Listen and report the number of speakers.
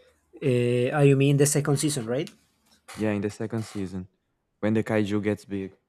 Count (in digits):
2